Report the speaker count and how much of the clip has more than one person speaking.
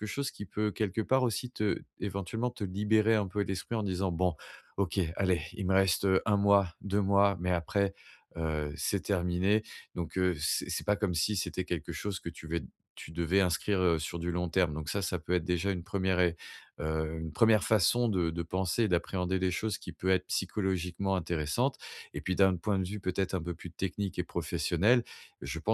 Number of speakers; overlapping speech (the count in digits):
1, no overlap